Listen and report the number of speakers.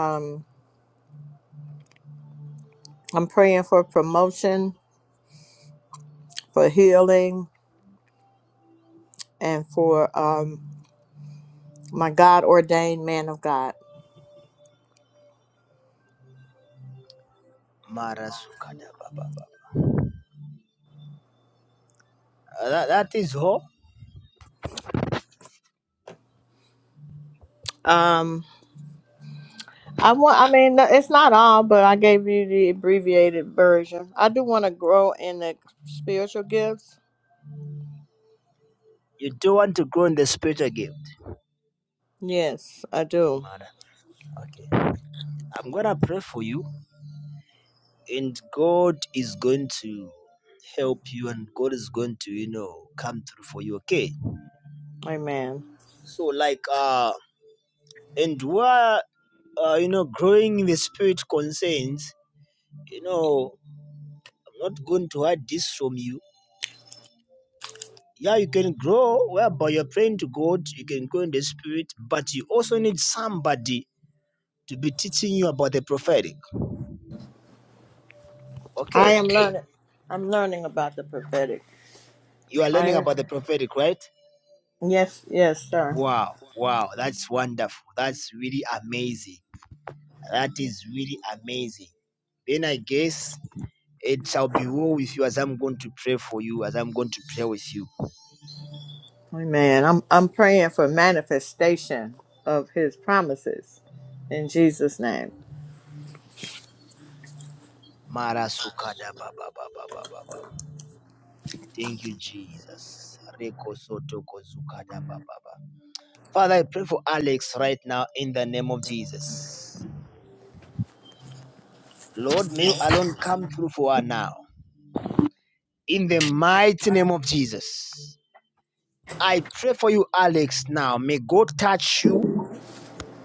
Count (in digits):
2